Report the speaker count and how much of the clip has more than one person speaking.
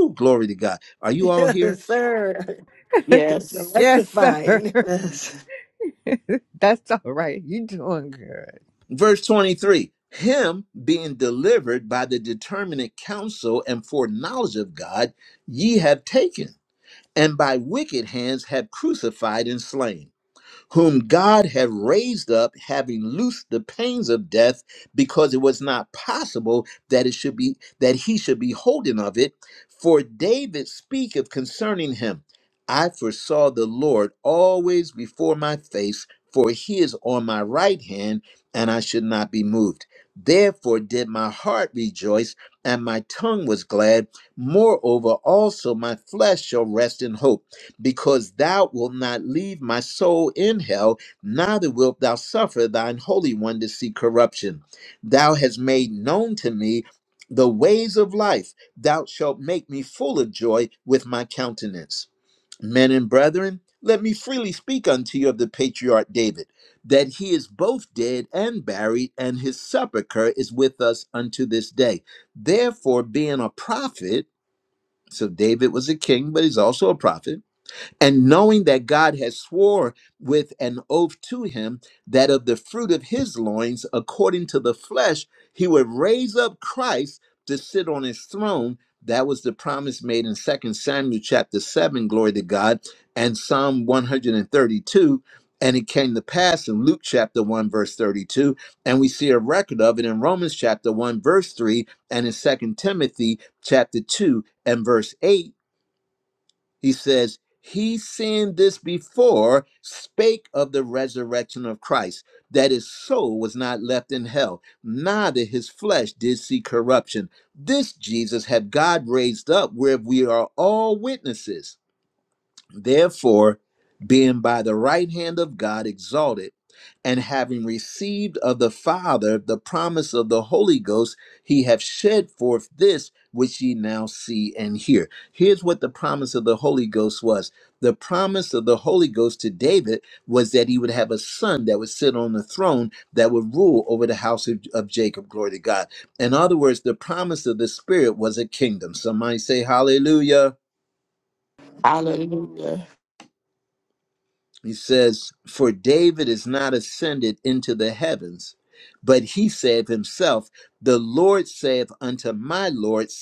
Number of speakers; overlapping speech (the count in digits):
4, about 1%